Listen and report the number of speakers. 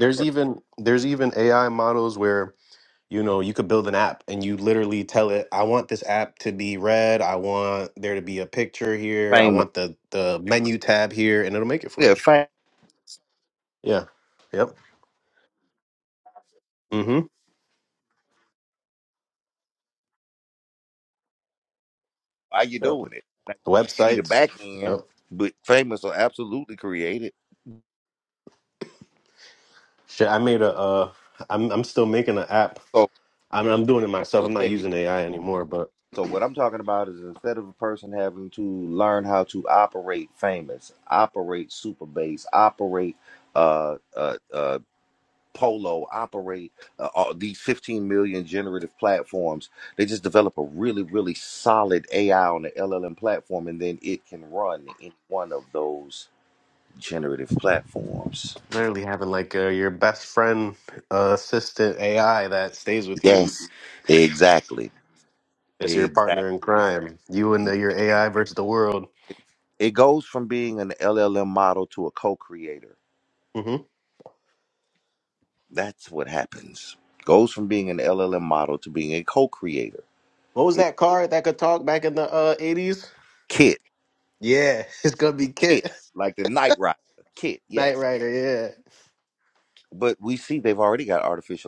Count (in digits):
2